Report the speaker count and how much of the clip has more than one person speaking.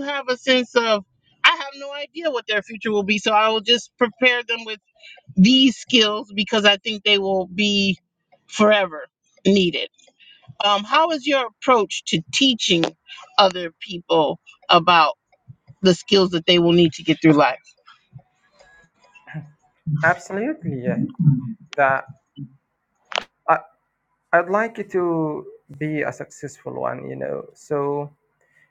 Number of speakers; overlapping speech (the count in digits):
2, no overlap